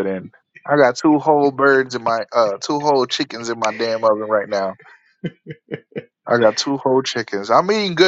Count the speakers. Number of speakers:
1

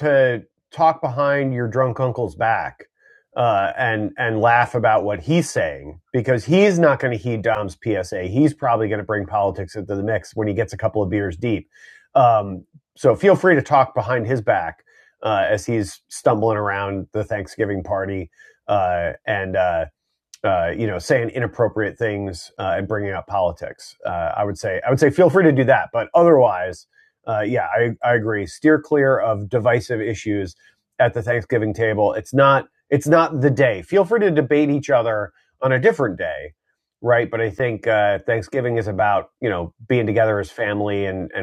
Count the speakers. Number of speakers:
1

